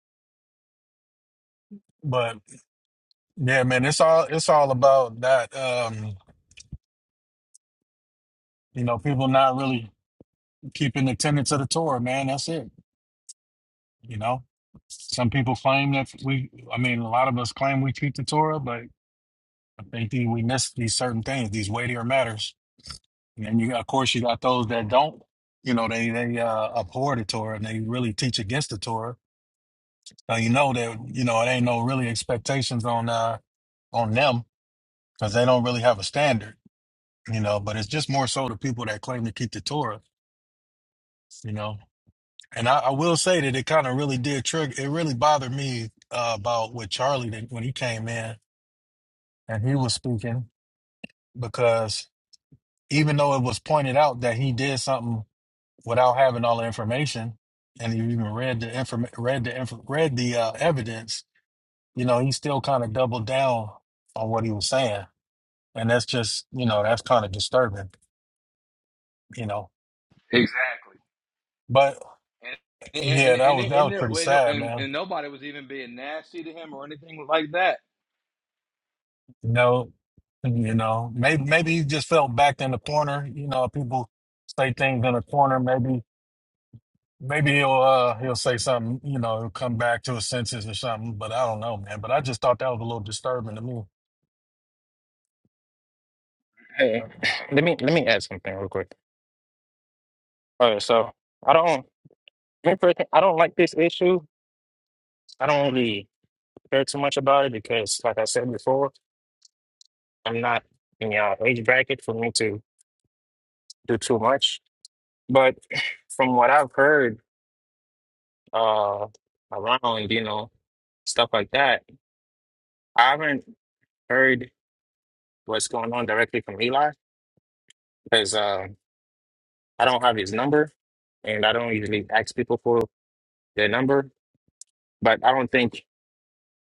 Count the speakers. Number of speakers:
3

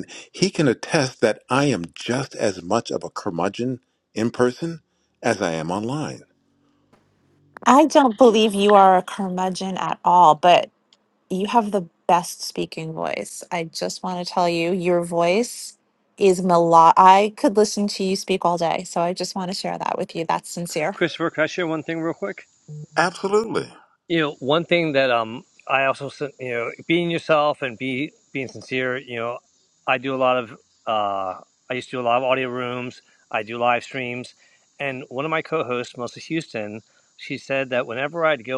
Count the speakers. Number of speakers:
3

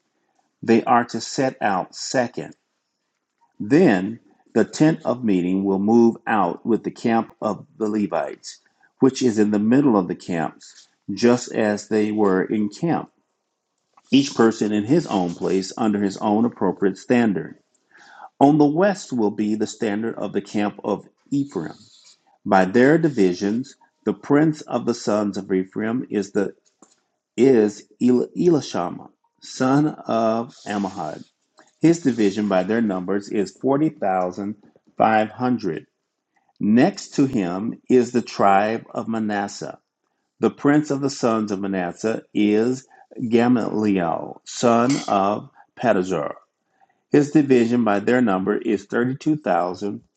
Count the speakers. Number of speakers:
1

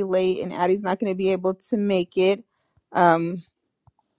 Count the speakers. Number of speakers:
1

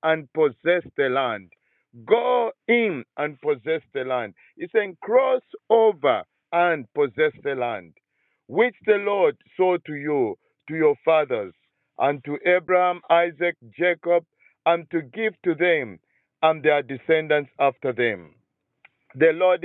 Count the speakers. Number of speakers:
1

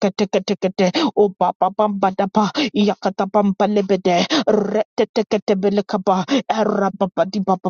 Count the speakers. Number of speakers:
1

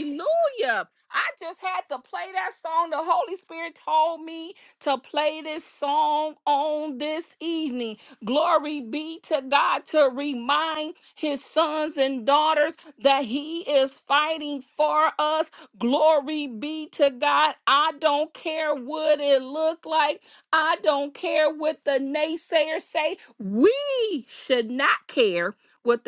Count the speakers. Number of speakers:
1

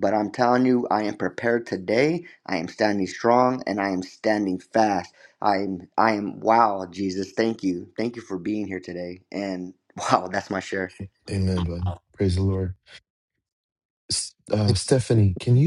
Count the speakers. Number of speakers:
2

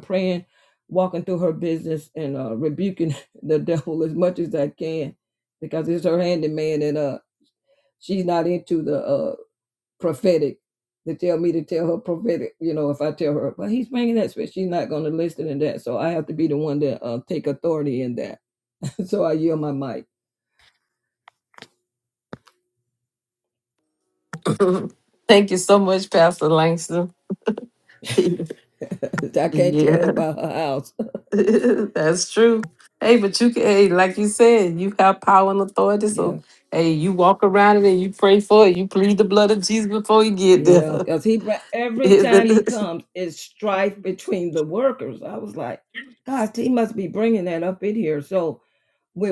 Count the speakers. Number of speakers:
2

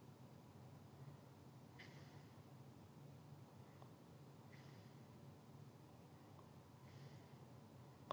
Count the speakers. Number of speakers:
0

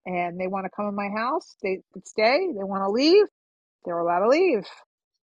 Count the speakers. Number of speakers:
1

